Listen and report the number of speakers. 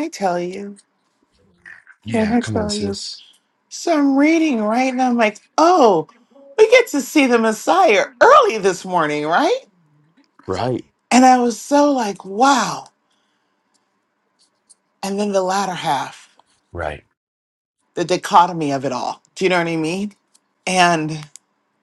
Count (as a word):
two